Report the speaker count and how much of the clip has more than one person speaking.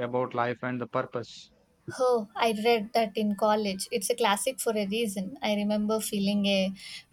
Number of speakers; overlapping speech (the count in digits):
2, no overlap